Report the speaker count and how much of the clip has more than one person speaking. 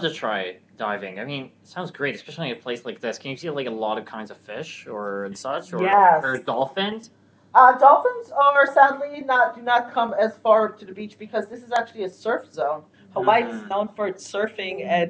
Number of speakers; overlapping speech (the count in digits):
2, about 7%